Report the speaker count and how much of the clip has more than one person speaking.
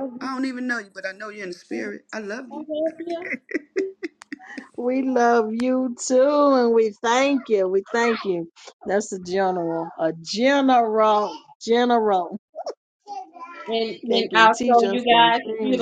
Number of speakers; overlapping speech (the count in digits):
3, about 14%